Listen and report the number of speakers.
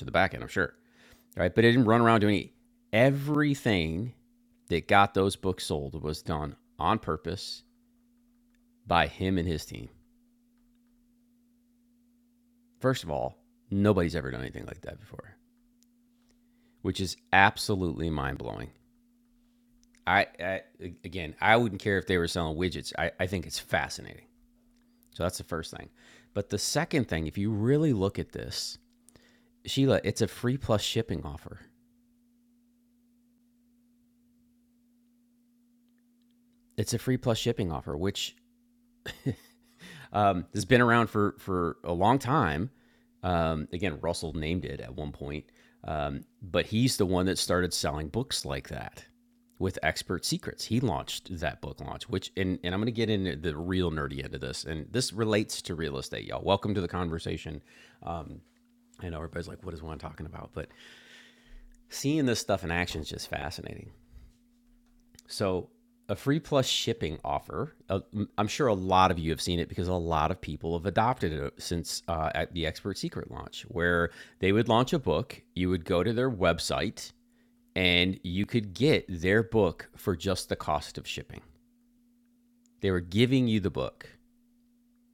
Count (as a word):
one